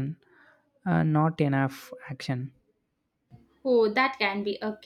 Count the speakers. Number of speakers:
two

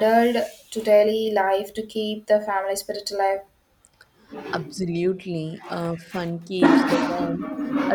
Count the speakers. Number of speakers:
two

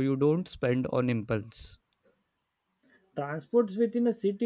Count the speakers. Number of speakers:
two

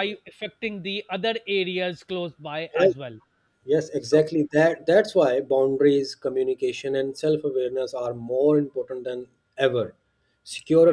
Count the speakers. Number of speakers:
two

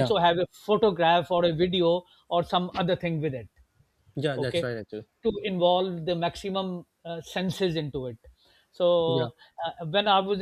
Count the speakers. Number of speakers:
two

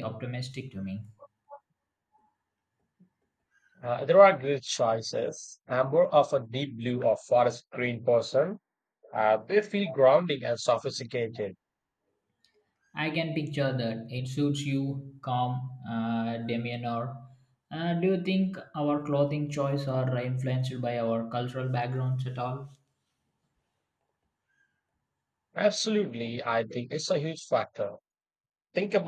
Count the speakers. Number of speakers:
two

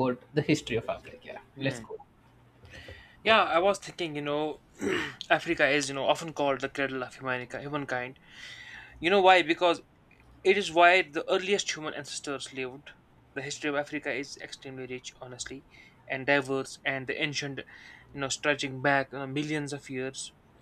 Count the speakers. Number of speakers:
two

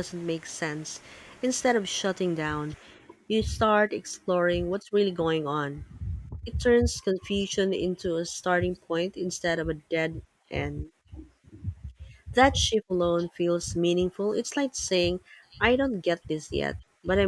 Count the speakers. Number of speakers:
one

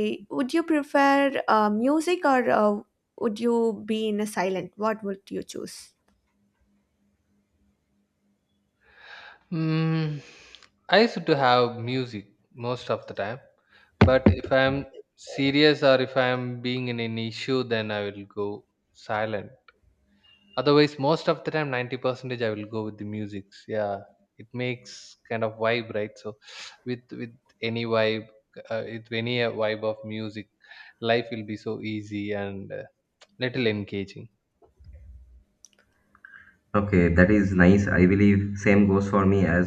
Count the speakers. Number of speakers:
three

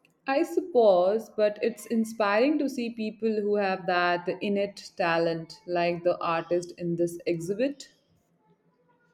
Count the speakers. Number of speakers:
one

